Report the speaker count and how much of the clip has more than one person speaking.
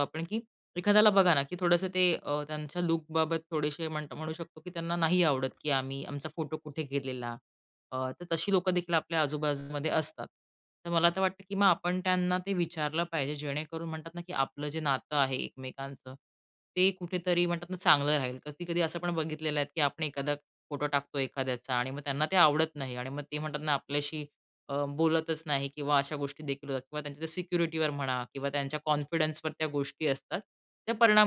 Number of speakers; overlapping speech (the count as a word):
one, no overlap